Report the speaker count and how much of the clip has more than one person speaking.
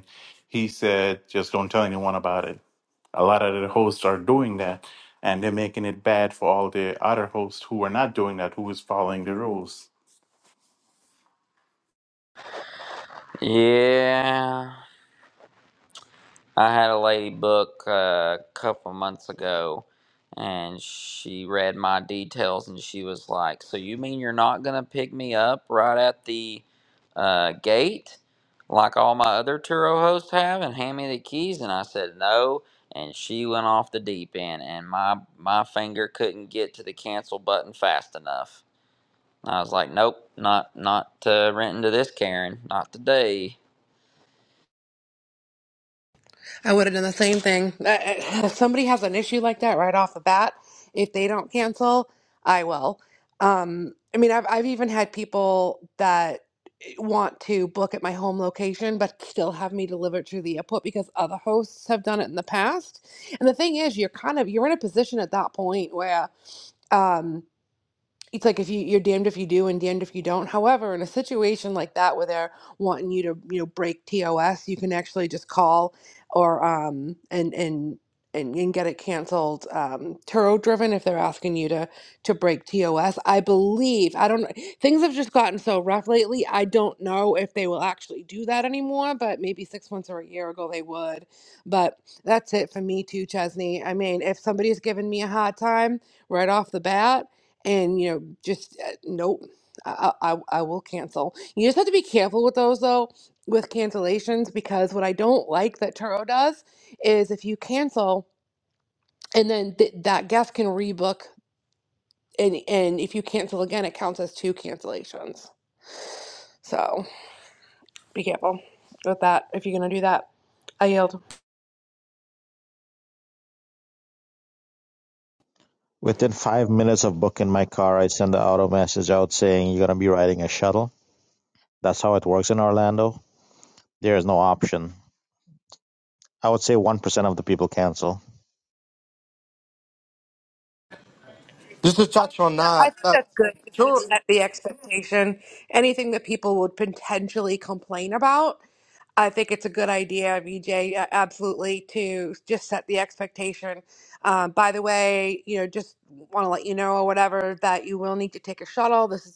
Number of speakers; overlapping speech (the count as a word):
five, under 1%